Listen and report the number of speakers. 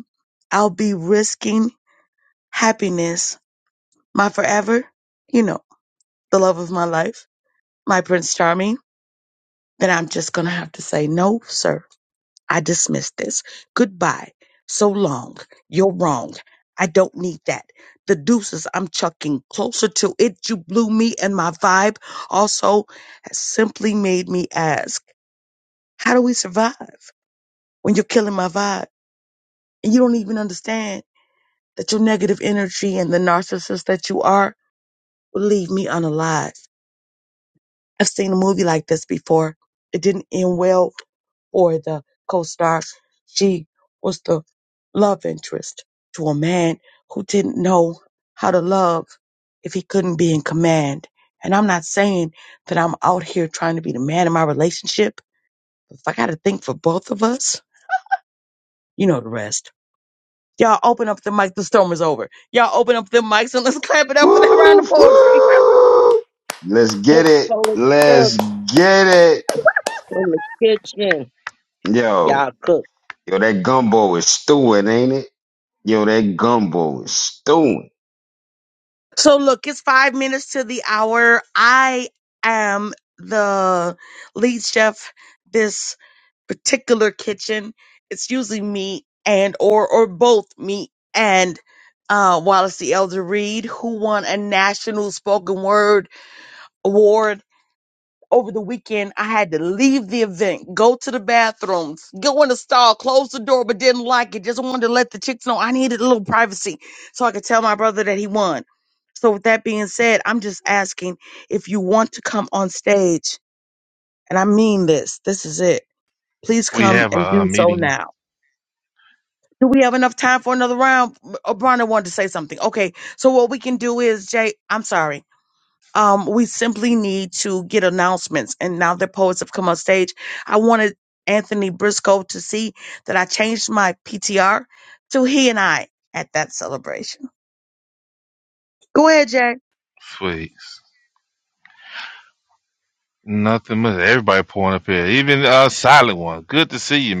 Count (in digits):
4